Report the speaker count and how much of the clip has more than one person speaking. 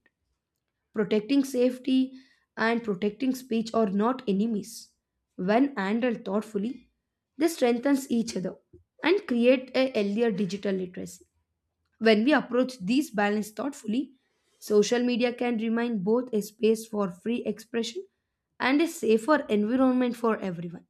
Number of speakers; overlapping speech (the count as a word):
one, no overlap